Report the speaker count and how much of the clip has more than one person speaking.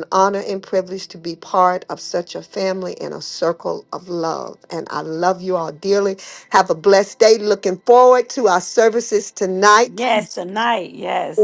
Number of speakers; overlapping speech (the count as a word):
two, about 1%